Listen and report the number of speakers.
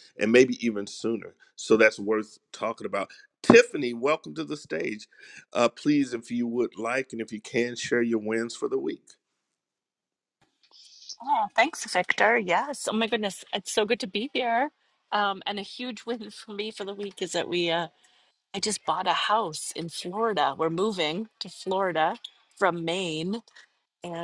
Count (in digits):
2